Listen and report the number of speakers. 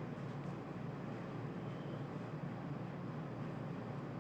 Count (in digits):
0